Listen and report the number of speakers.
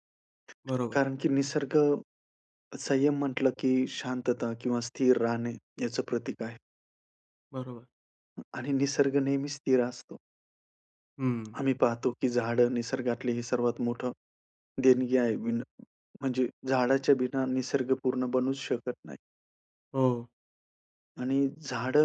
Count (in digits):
2